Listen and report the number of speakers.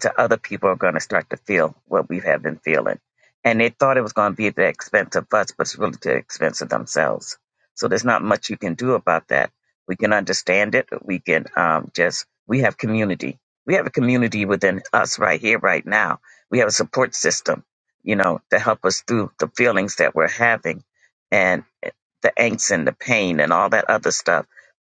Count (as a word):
one